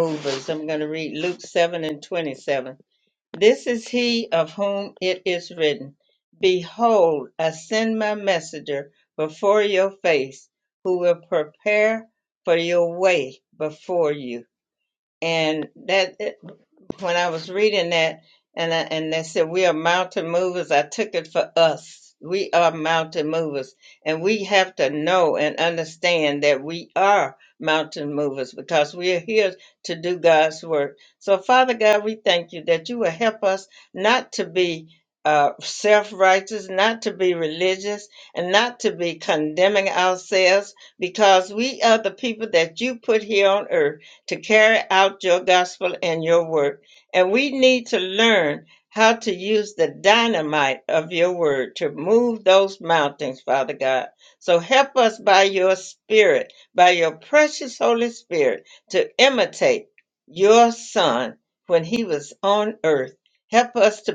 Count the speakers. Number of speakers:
1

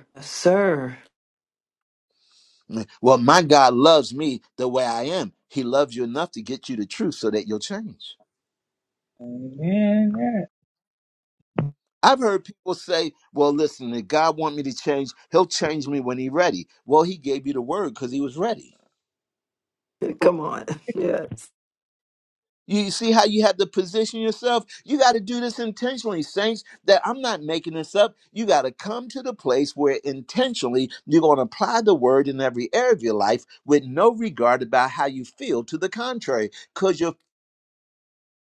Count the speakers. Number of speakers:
3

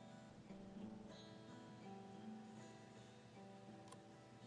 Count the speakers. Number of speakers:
0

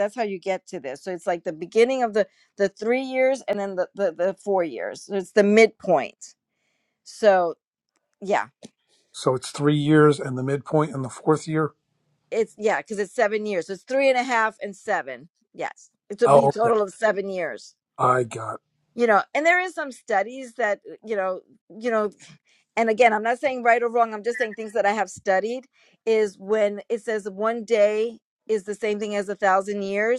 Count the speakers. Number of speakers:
2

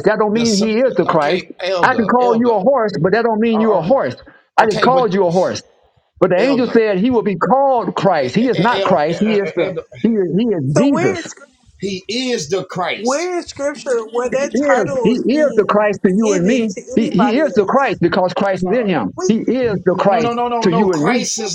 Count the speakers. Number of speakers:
3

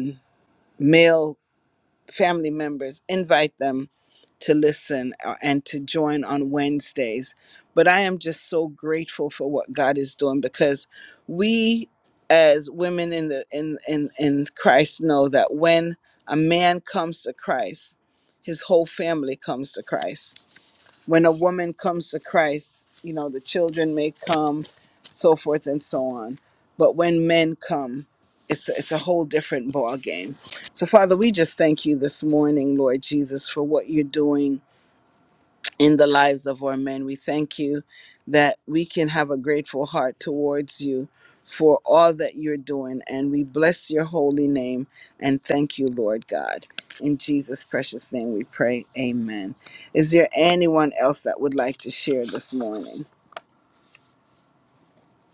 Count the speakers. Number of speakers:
1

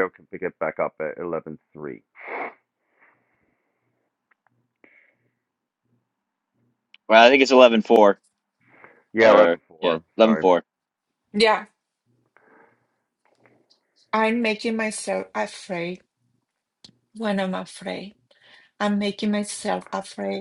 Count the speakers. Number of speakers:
3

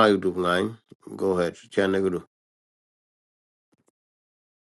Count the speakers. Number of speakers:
1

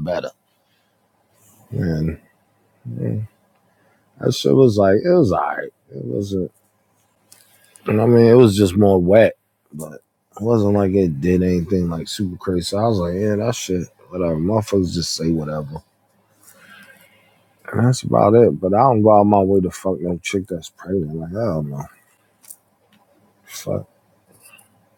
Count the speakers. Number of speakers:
1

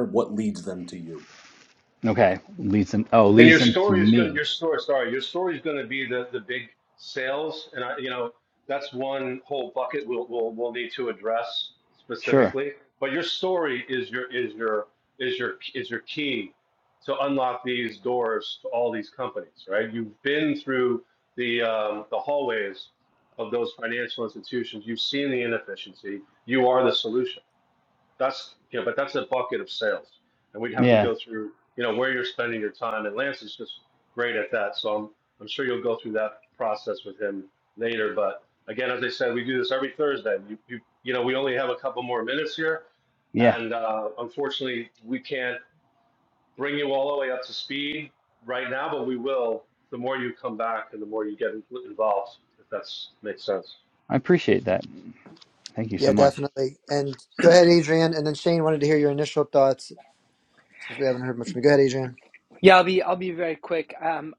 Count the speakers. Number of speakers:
5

